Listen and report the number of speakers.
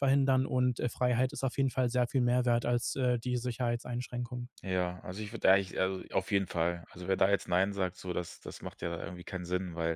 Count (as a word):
two